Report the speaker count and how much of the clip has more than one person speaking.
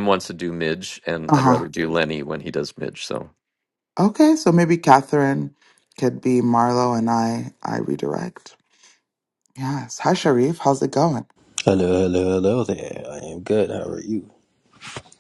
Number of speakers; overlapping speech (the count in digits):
3, about 2%